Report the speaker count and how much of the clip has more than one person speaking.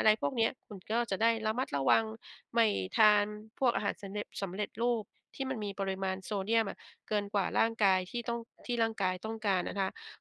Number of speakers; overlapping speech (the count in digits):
1, no overlap